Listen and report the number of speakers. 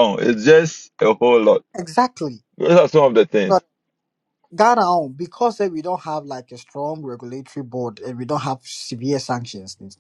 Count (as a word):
two